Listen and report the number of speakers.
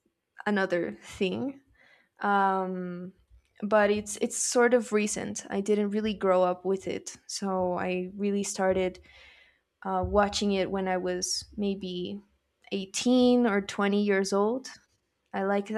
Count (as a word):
one